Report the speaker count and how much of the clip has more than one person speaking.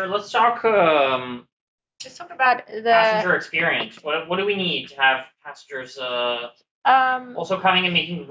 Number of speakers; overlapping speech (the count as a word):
two, about 7%